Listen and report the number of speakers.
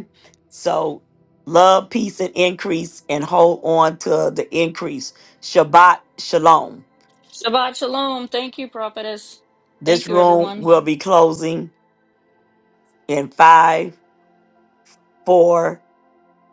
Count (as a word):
two